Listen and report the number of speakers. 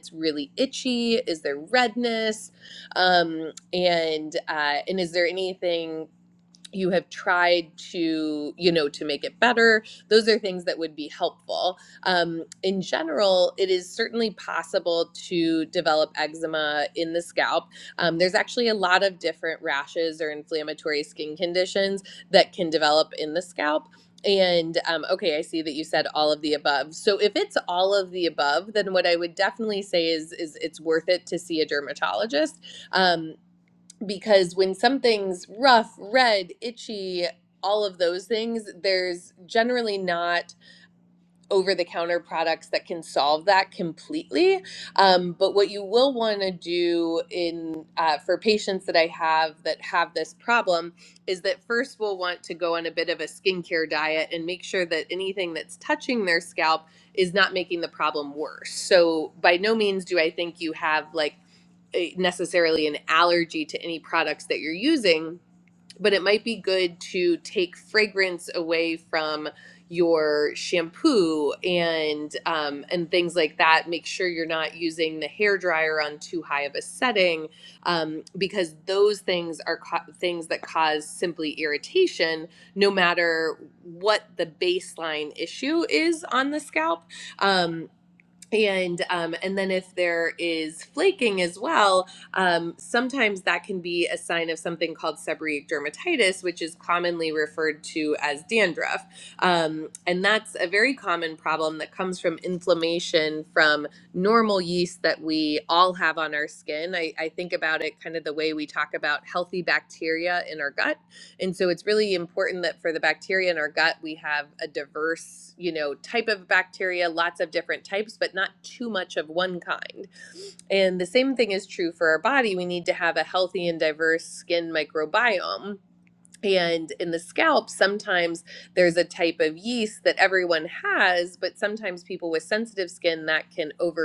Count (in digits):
1